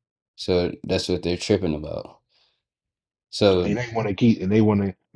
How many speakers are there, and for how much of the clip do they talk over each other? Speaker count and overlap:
2, about 2%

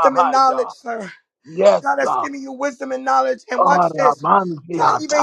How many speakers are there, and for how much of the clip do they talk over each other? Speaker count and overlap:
2, about 42%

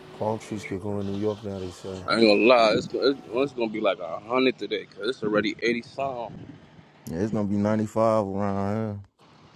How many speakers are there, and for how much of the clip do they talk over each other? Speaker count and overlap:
3, under 1%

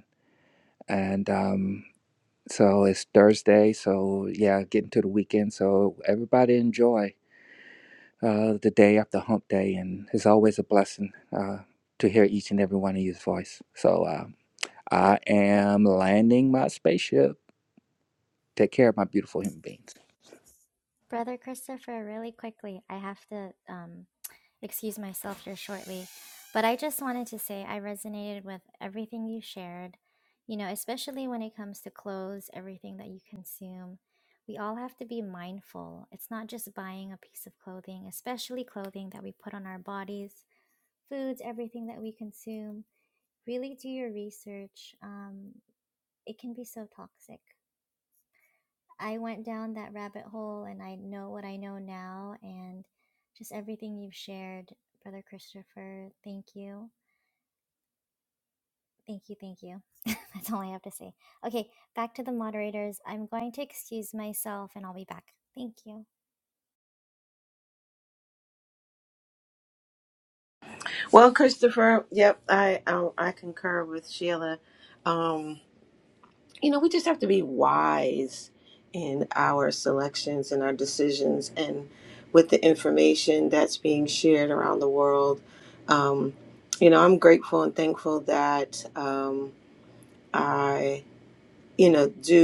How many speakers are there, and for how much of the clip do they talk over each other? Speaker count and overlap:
3, no overlap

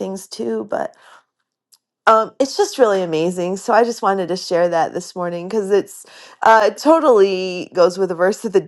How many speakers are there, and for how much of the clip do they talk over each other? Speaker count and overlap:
1, no overlap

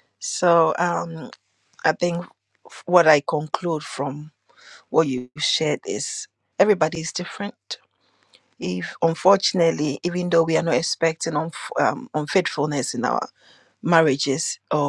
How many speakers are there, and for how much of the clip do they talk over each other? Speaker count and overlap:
1, no overlap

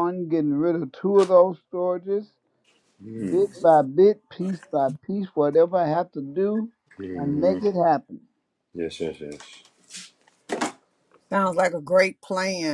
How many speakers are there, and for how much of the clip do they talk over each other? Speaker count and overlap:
3, about 6%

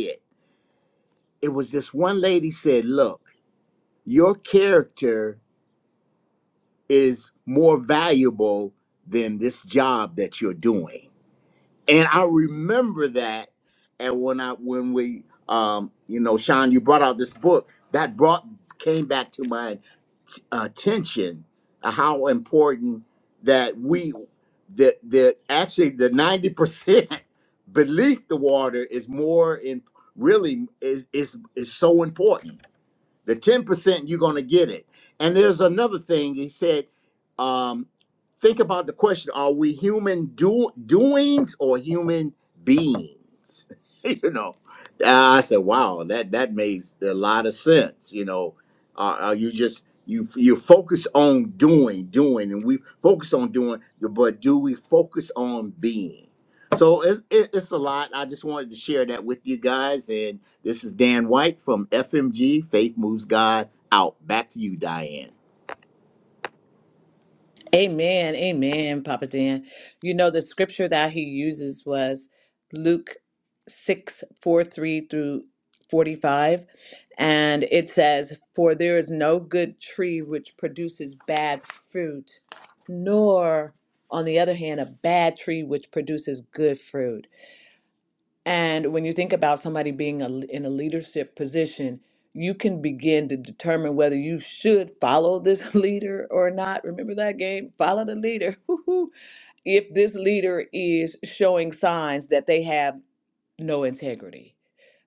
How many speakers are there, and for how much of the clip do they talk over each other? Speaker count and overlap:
2, no overlap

